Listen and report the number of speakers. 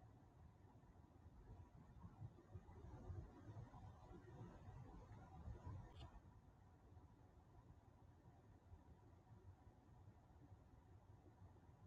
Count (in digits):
0